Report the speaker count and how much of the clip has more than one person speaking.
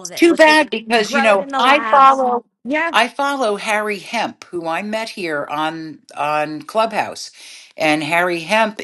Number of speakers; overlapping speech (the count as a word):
two, about 17%